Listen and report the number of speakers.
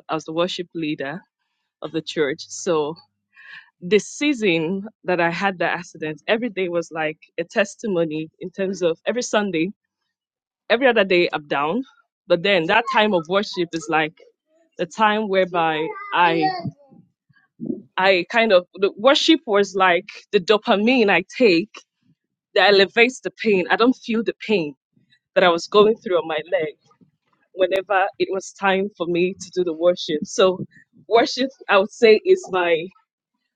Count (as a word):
one